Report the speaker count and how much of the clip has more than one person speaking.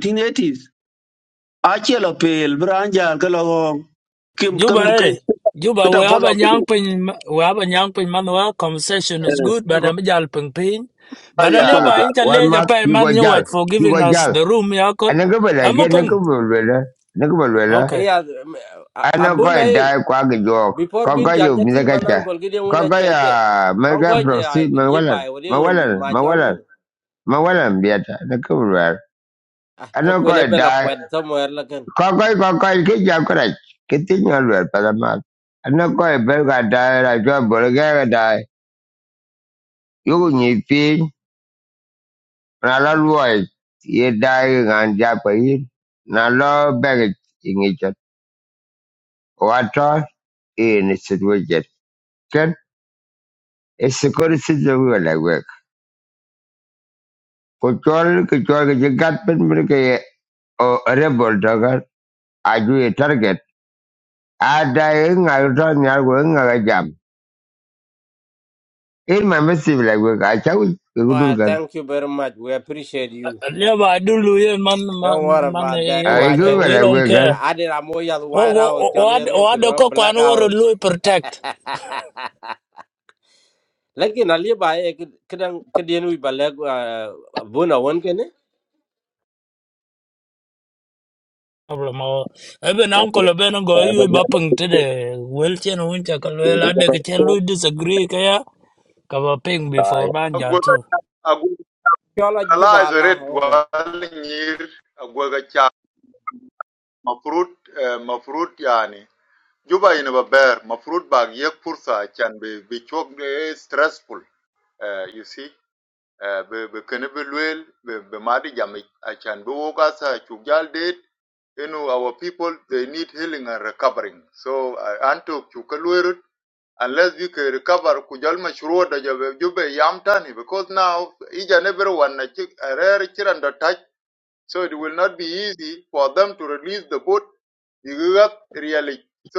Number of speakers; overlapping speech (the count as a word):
five, about 12%